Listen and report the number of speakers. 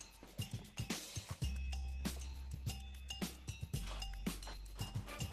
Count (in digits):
0